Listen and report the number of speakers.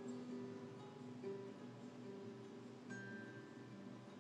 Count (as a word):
zero